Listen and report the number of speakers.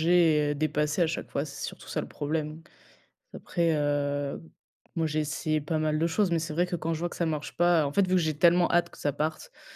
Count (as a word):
one